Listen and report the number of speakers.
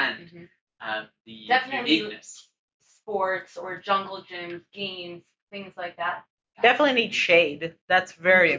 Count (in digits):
3